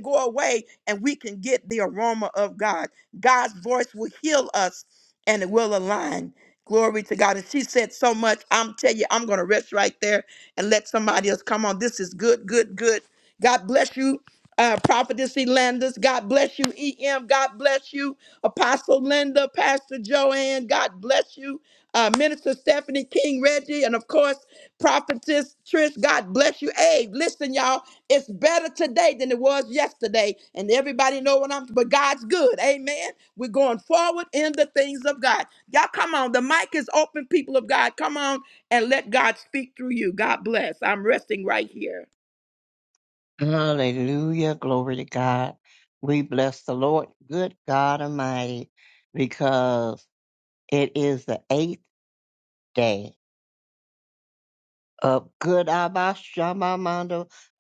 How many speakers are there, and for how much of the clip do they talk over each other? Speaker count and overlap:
2, no overlap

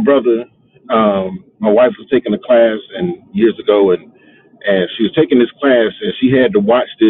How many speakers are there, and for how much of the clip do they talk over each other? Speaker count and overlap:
1, no overlap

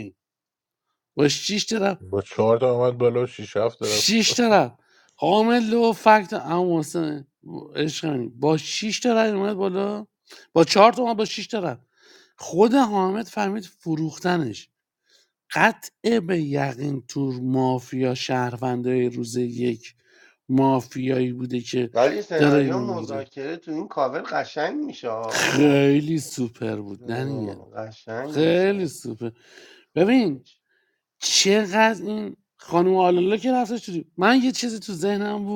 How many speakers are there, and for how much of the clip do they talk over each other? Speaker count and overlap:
3, about 7%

